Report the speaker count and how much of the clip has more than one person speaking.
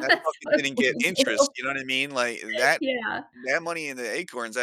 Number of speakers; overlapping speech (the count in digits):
2, about 23%